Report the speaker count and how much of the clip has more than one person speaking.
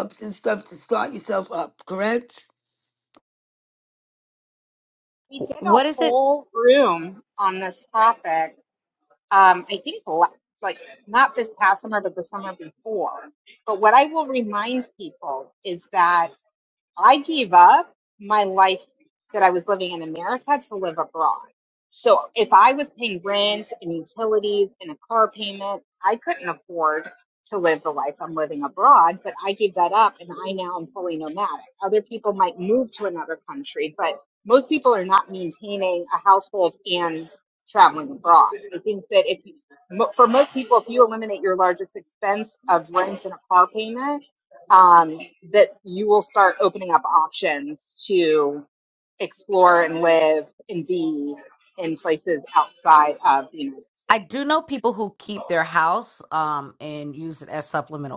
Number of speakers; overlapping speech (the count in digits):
3, about 1%